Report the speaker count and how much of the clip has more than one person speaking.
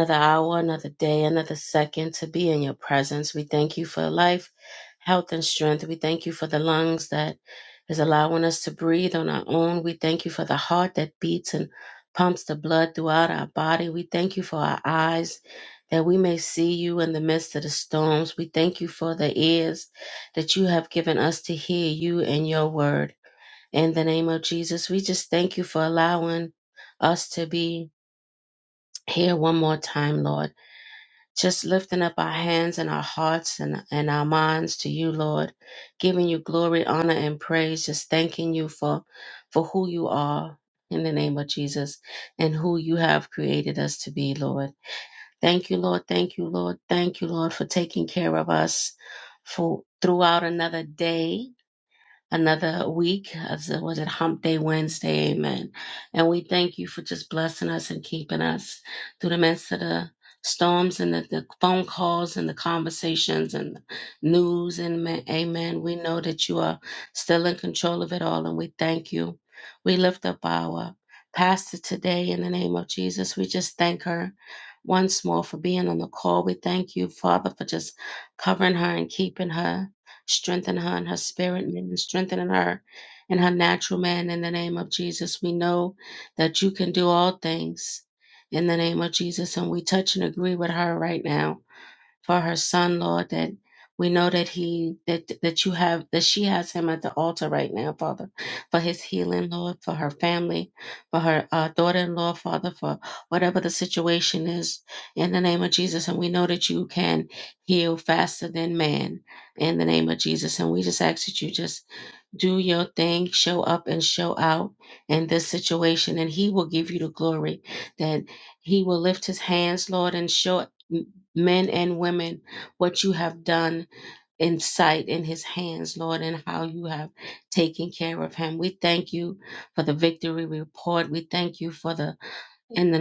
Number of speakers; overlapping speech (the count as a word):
one, no overlap